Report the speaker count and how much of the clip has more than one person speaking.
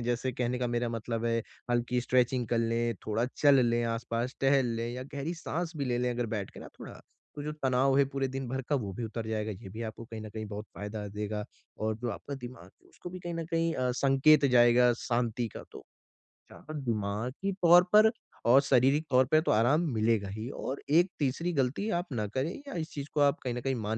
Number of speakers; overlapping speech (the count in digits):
1, no overlap